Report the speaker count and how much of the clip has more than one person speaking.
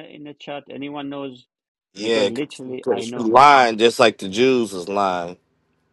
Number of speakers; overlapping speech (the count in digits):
2, about 9%